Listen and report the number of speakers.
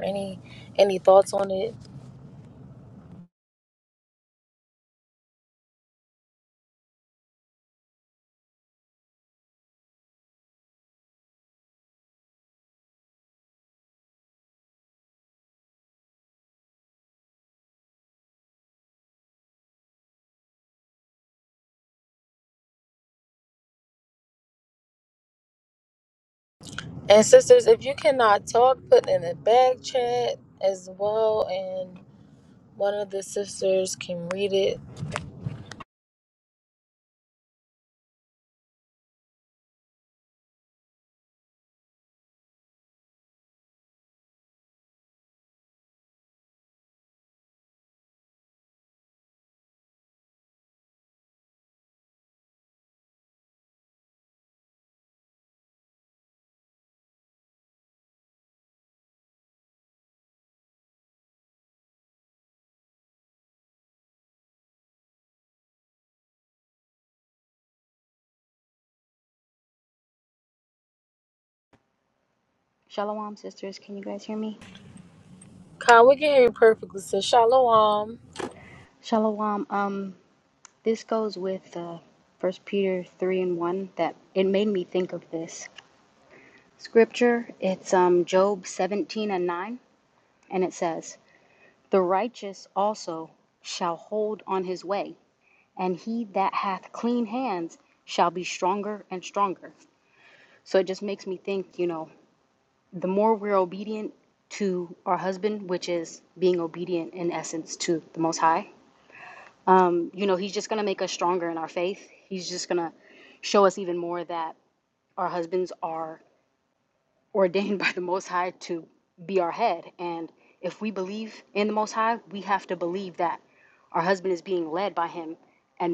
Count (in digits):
2